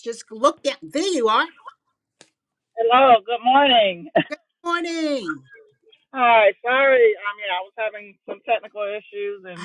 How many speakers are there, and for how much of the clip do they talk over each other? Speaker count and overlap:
two, about 1%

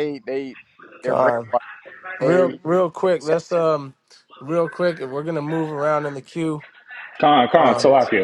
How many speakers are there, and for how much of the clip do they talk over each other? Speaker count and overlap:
three, about 15%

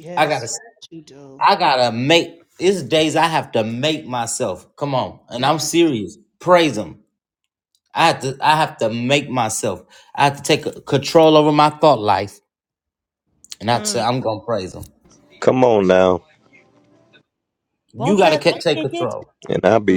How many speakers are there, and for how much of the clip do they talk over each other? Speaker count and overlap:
three, about 10%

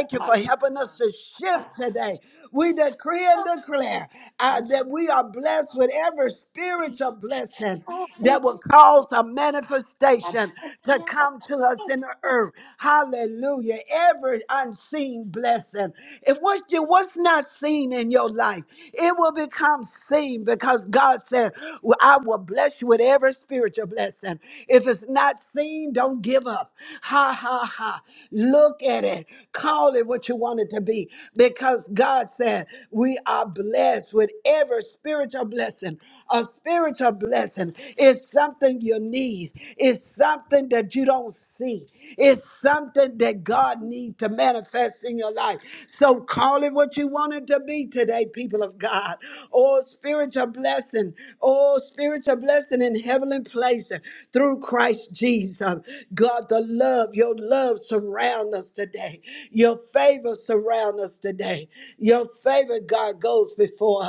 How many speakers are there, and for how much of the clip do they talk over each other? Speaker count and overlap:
two, about 3%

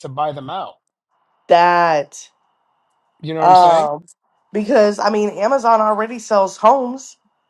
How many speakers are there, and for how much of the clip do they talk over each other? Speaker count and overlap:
two, about 6%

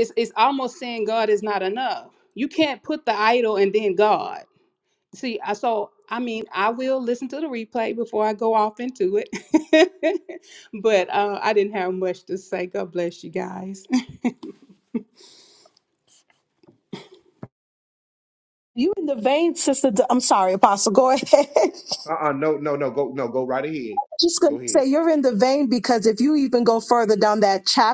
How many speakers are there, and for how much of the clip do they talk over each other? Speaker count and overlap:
three, about 1%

